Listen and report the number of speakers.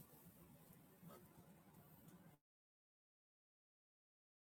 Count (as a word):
zero